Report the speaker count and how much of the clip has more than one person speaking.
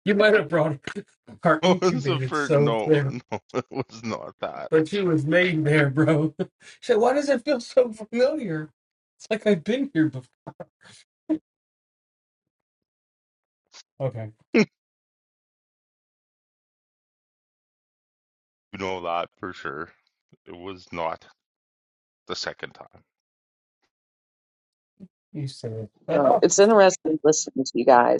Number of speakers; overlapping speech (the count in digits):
3, about 6%